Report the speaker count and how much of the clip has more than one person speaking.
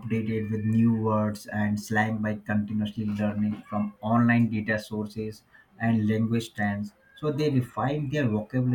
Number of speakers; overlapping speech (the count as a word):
one, no overlap